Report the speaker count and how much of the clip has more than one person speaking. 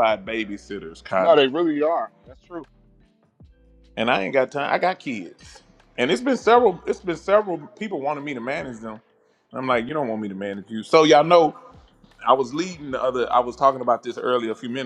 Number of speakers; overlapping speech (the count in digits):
2, about 2%